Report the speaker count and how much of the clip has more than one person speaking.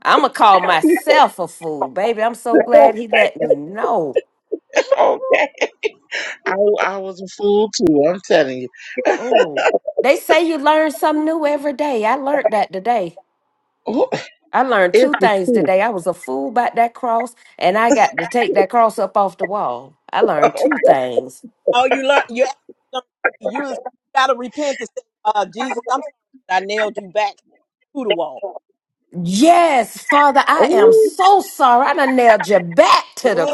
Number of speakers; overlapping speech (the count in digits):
3, about 4%